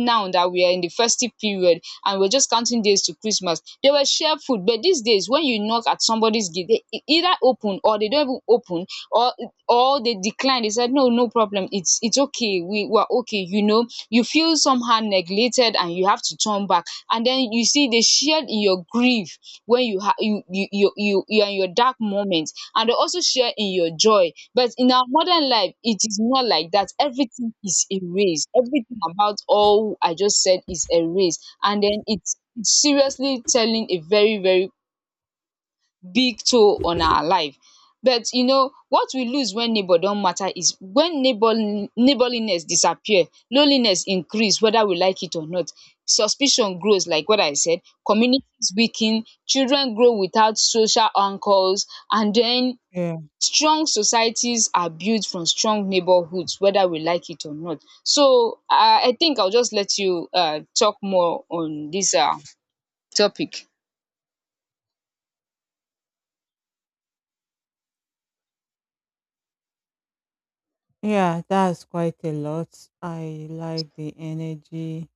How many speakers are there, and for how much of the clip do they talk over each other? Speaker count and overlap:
2, no overlap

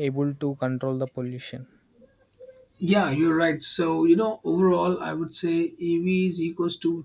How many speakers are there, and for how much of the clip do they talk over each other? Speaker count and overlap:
2, no overlap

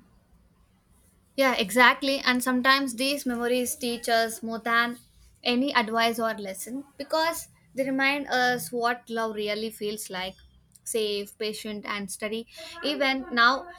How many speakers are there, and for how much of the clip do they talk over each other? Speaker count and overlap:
1, no overlap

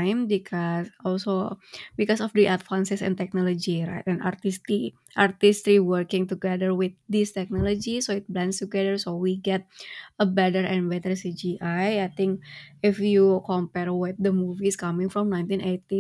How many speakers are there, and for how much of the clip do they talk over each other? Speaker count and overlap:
1, no overlap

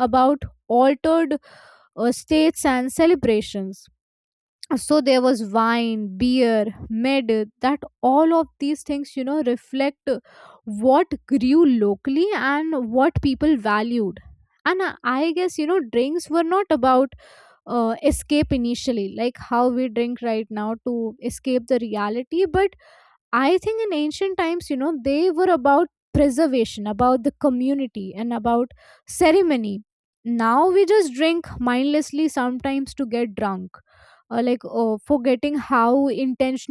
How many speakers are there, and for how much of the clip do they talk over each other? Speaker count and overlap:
1, no overlap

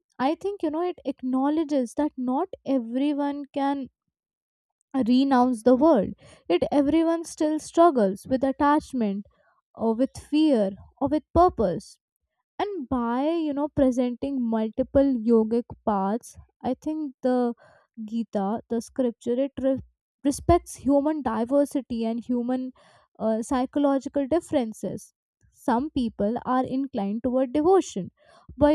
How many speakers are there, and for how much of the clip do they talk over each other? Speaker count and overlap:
1, no overlap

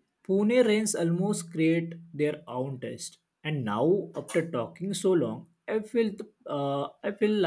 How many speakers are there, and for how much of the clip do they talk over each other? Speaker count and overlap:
1, no overlap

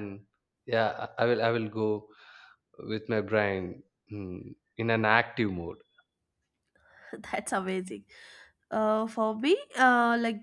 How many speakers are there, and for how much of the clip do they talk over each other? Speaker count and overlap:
2, no overlap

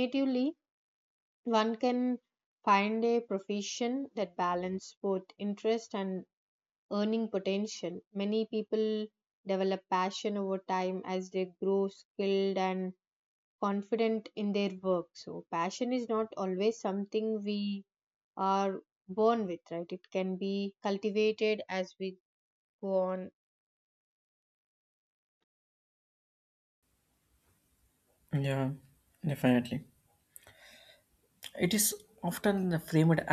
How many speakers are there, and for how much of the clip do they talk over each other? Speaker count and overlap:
2, no overlap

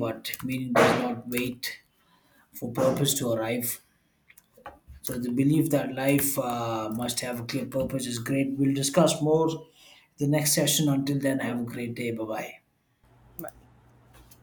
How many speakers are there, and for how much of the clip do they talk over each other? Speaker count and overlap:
1, no overlap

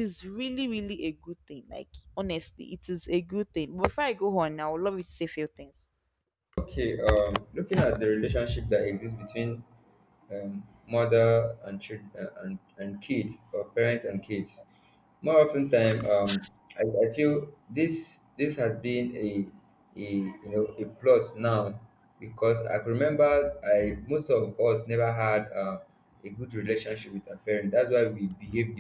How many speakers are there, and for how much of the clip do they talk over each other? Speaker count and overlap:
2, no overlap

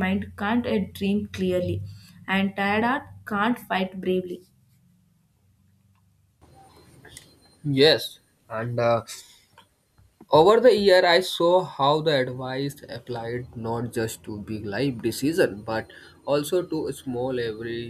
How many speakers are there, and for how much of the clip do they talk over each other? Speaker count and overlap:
2, no overlap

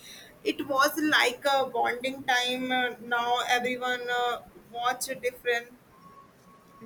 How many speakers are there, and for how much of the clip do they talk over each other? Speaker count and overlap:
1, no overlap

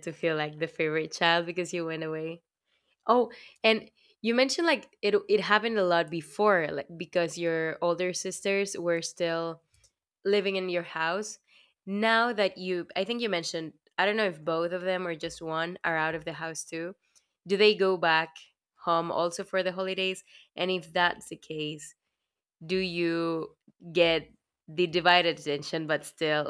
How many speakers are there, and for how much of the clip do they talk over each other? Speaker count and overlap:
1, no overlap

